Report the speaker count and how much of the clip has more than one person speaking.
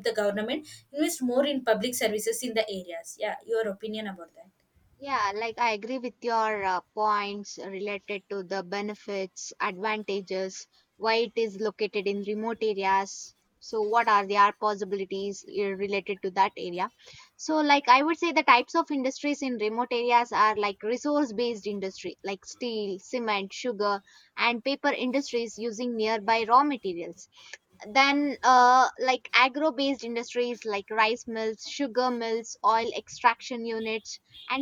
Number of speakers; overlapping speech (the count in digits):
2, no overlap